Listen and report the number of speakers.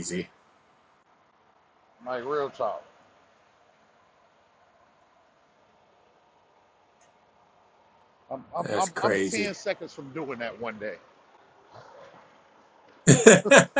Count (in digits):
2